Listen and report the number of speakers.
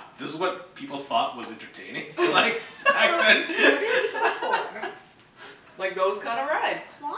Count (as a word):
three